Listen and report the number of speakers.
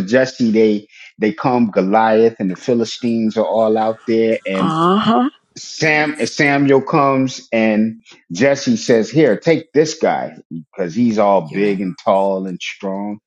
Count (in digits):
2